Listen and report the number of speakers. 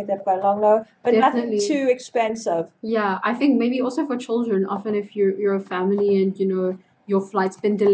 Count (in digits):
2